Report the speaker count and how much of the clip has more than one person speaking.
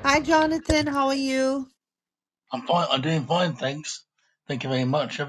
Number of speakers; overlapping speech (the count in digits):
2, no overlap